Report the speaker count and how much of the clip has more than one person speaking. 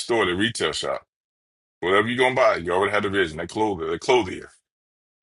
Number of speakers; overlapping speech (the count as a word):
one, no overlap